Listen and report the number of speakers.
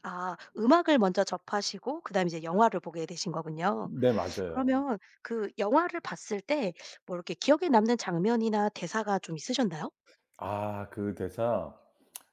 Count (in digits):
2